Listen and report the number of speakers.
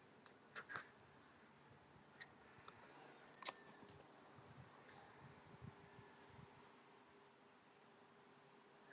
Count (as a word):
zero